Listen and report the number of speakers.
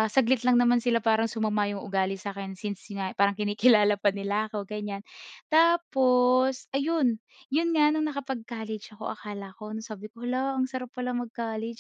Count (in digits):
1